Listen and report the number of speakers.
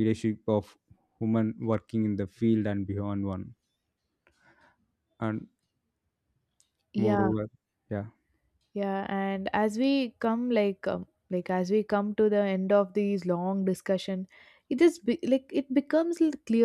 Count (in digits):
2